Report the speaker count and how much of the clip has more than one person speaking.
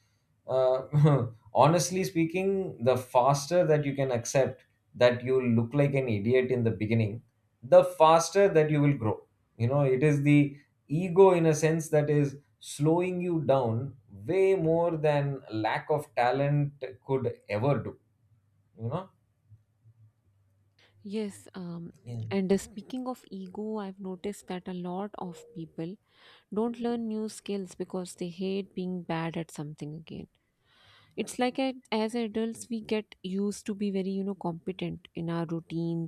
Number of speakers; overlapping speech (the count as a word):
two, no overlap